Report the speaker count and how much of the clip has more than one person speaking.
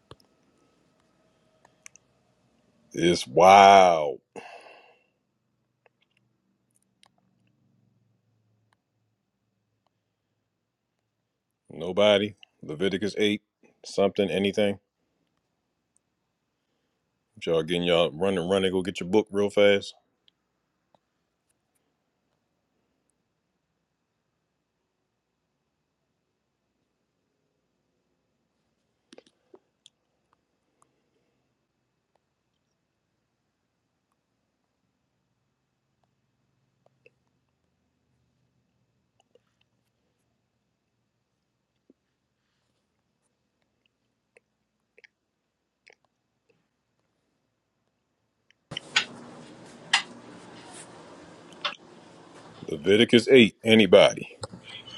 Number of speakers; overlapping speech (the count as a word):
one, no overlap